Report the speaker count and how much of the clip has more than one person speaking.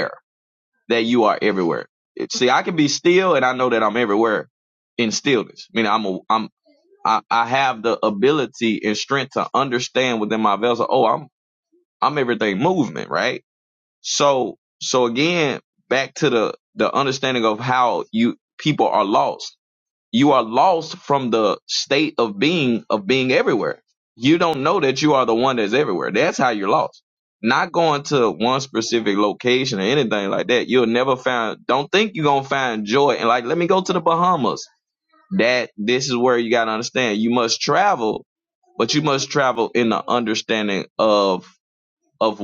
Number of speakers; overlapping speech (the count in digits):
1, no overlap